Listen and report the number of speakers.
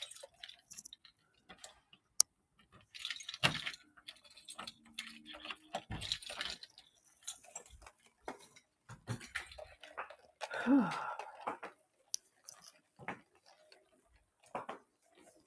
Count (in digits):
0